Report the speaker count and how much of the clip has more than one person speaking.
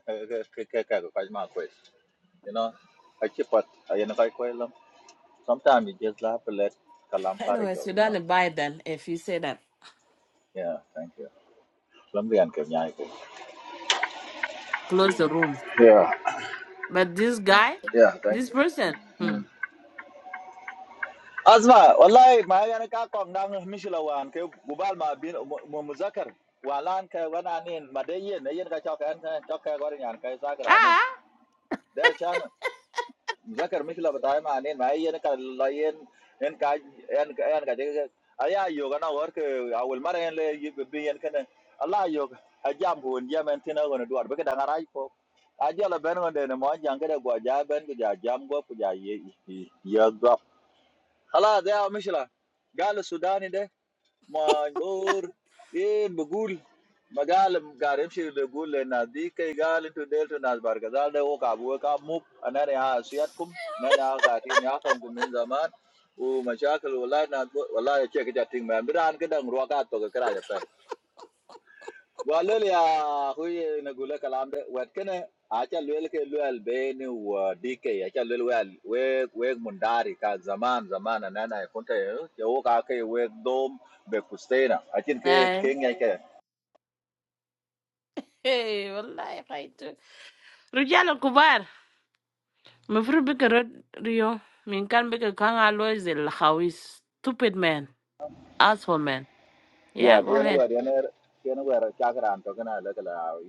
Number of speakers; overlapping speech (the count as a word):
two, about 2%